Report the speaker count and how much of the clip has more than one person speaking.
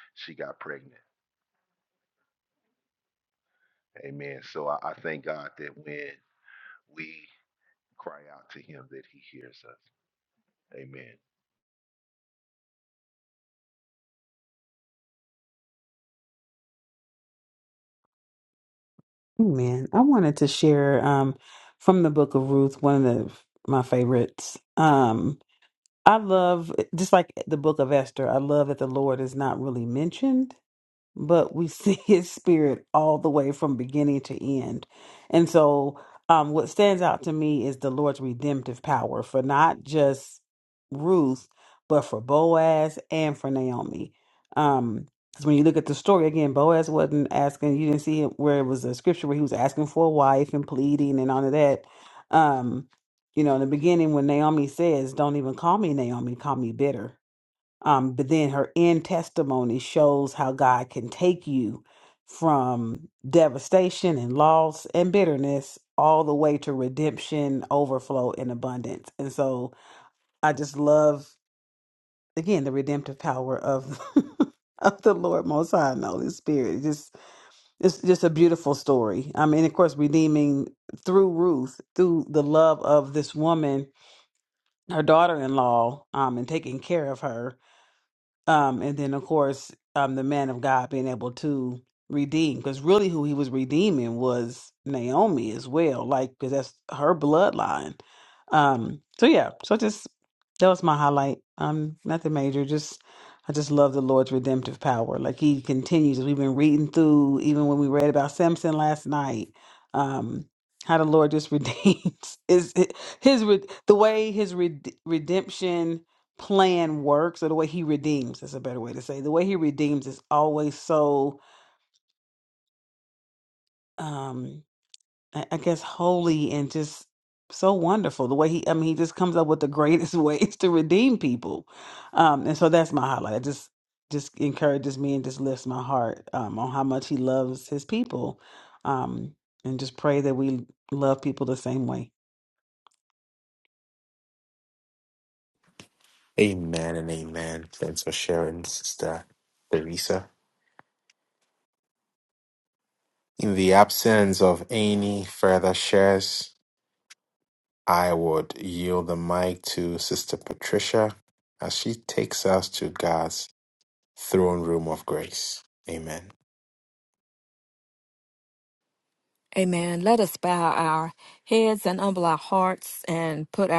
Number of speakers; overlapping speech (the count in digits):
4, no overlap